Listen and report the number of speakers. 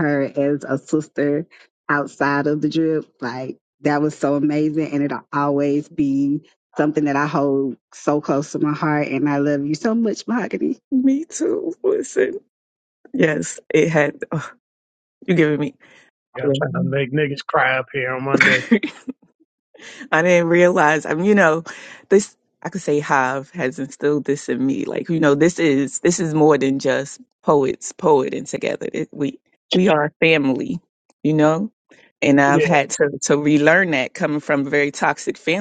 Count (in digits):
3